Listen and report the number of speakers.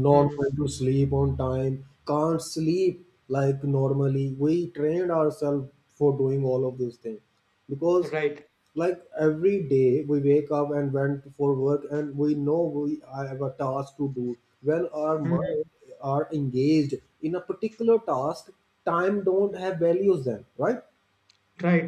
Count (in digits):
2